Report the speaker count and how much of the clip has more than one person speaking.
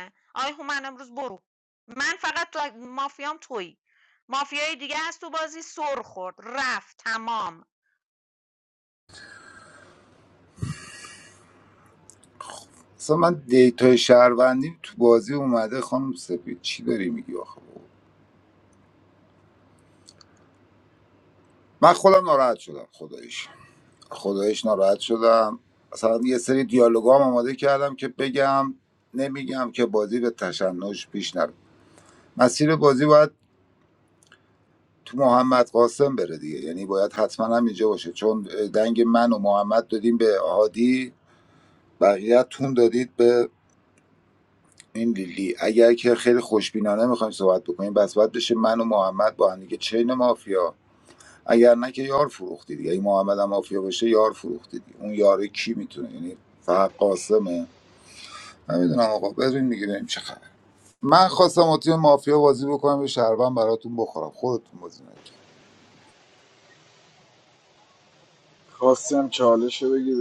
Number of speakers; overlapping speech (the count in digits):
3, no overlap